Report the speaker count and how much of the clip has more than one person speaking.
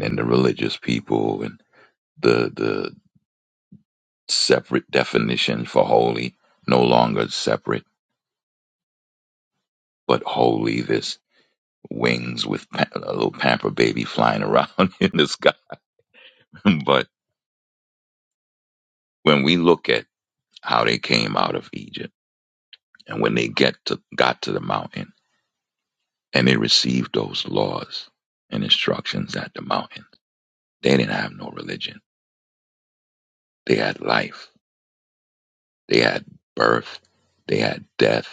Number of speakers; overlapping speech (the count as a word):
one, no overlap